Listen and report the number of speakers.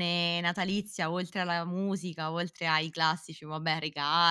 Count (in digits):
1